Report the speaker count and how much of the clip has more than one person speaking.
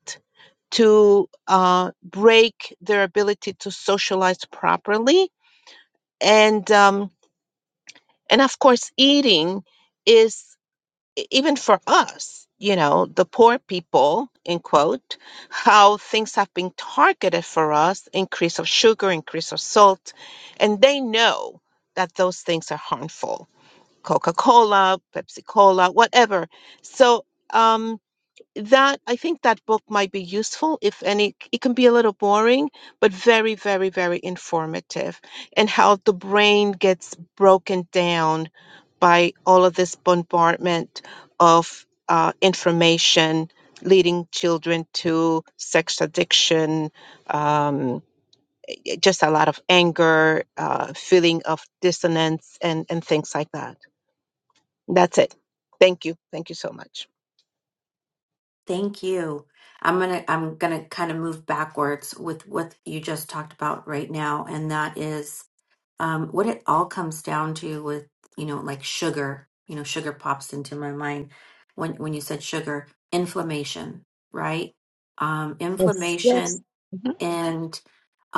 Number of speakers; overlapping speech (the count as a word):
two, under 1%